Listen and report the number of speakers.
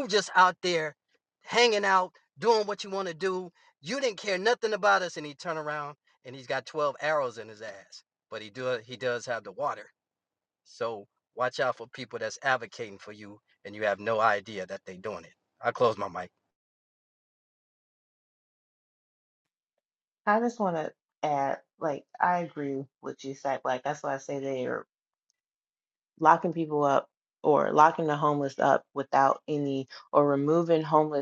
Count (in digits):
2